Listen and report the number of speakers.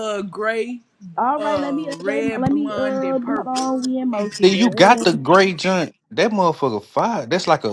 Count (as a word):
three